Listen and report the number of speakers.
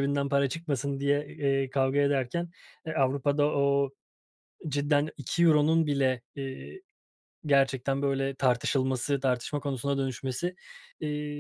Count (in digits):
1